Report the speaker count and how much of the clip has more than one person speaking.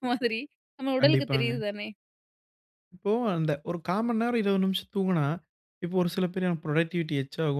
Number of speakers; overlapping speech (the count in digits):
2, about 8%